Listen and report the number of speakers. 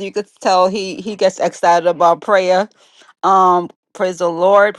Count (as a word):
one